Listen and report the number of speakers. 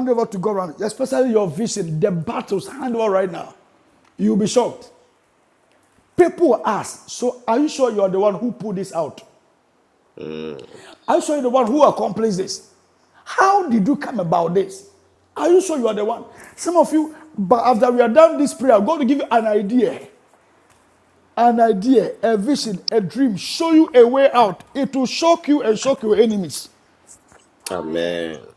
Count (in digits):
2